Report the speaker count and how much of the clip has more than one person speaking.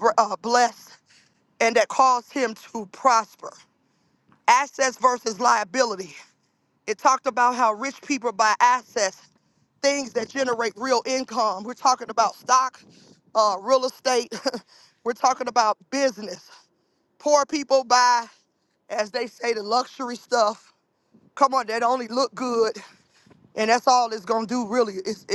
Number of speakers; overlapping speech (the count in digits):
1, no overlap